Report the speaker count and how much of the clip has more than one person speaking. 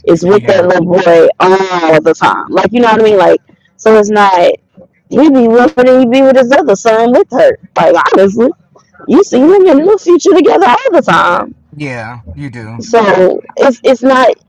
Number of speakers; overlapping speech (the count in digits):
2, about 3%